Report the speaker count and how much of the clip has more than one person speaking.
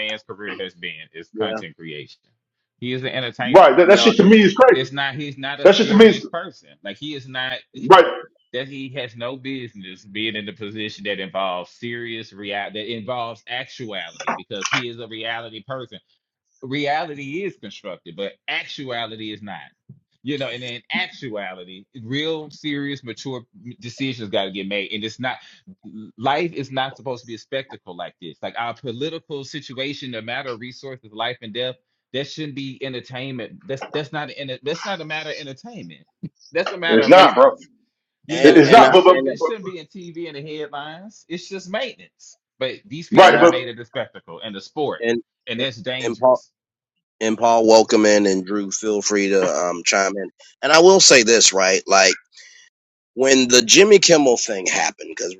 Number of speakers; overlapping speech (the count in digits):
3, about 8%